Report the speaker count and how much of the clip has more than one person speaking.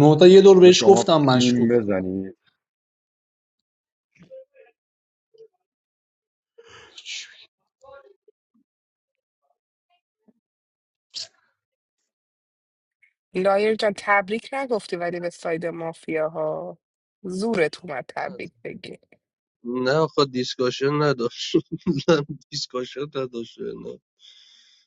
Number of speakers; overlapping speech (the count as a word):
four, about 5%